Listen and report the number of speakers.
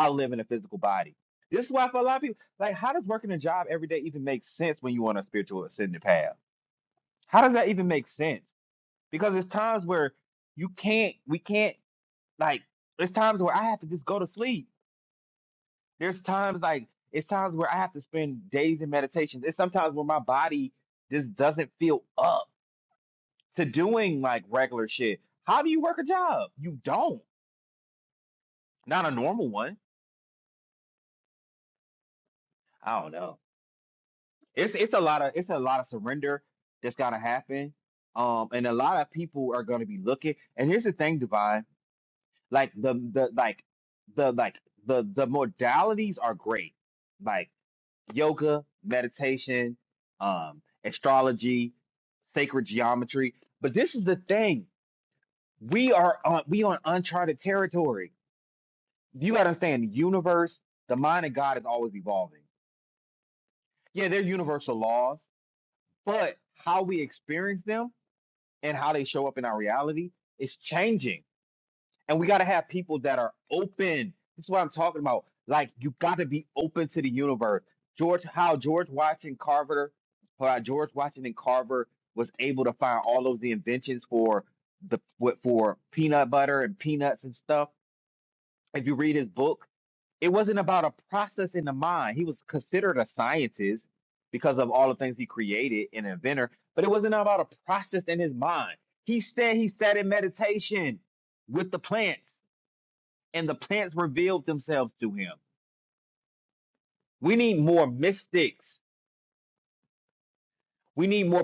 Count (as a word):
one